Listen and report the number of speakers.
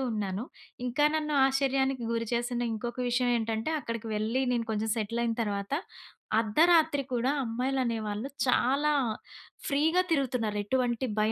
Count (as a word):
one